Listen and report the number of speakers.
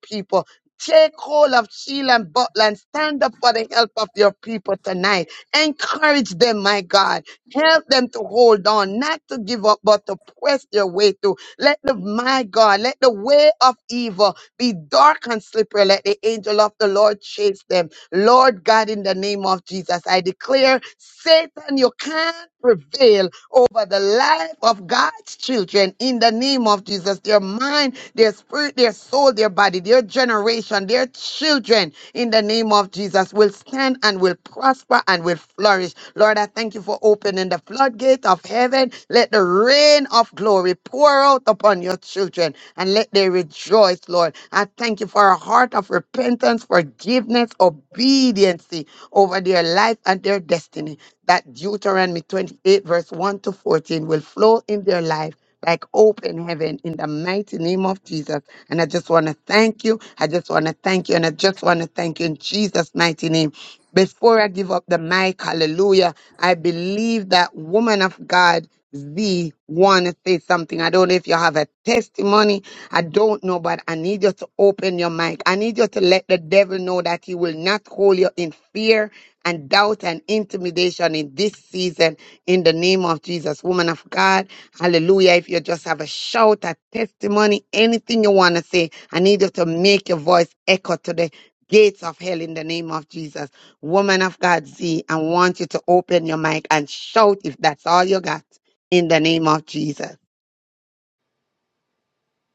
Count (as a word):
one